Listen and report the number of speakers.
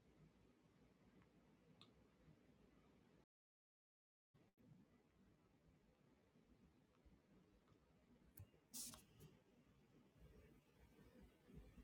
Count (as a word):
zero